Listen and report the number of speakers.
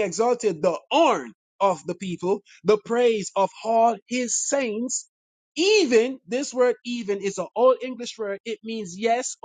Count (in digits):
1